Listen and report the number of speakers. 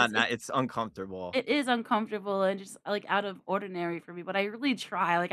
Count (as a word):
two